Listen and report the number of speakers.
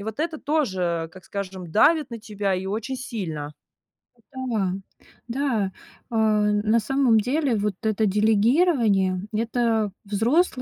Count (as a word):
two